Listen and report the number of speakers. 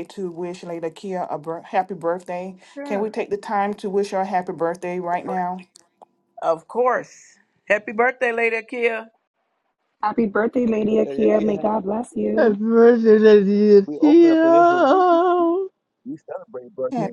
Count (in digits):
5